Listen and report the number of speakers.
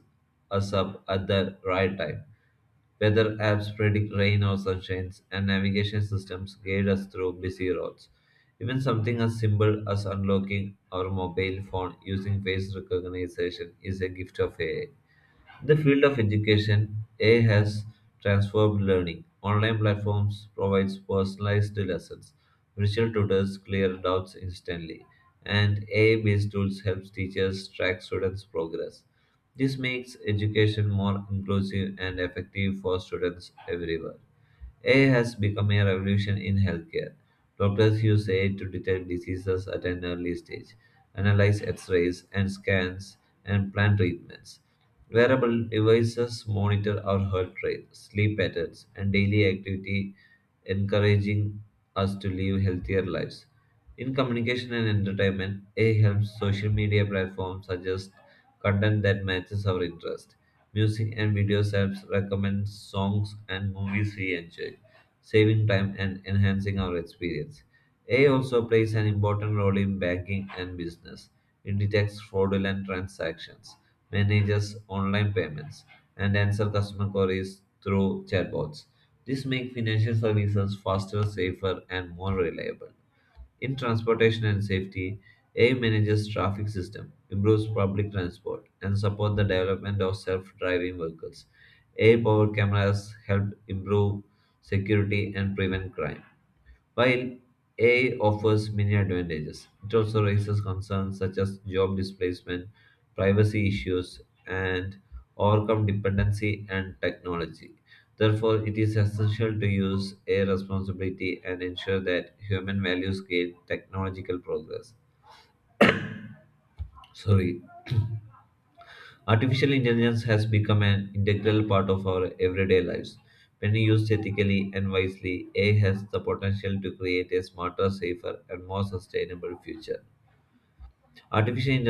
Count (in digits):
1